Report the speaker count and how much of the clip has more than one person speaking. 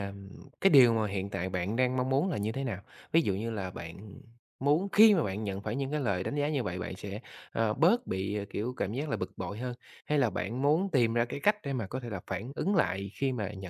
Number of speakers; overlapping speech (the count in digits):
1, no overlap